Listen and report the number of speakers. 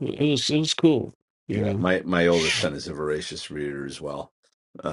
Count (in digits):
2